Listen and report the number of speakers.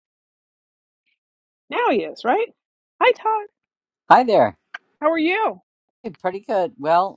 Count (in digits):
2